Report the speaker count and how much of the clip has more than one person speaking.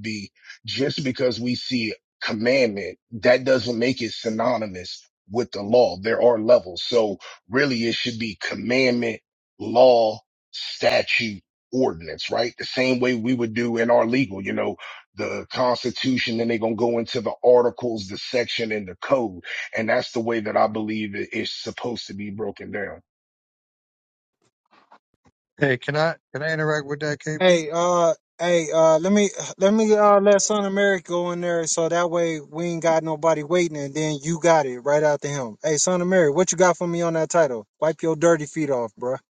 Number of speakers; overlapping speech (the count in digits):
3, under 1%